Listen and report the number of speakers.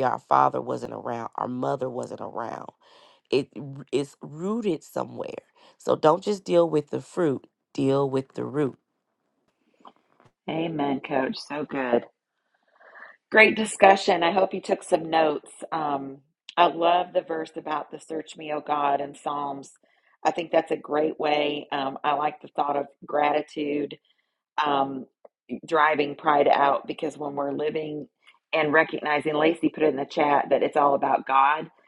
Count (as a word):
two